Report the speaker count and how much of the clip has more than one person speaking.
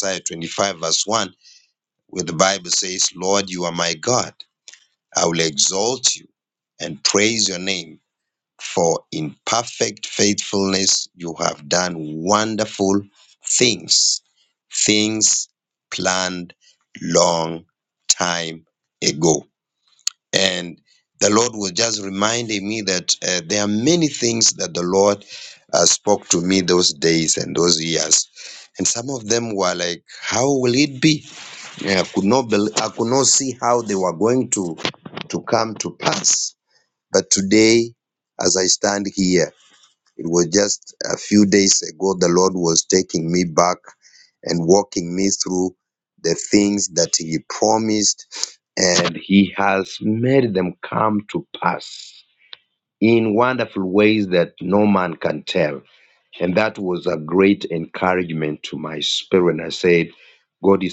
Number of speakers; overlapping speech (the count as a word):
one, no overlap